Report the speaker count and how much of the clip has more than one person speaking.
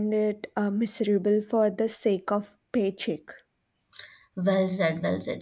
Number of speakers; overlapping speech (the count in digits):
2, no overlap